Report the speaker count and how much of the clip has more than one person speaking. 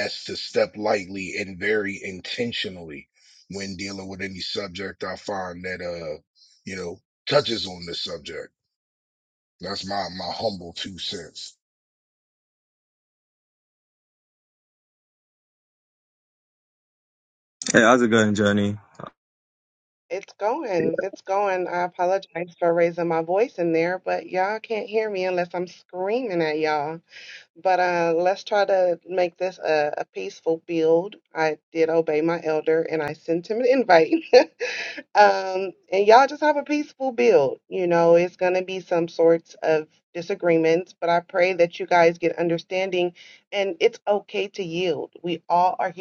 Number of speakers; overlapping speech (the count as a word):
three, no overlap